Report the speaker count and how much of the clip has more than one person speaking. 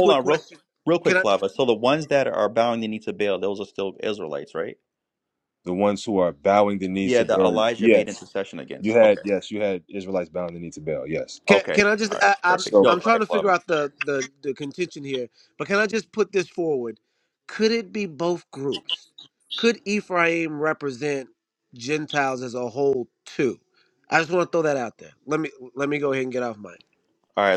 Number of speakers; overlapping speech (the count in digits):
3, about 15%